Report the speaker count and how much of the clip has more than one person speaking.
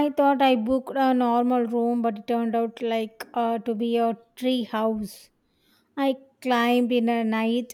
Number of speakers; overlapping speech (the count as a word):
one, no overlap